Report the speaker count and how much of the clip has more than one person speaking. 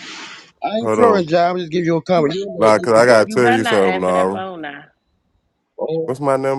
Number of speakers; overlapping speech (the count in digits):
3, about 34%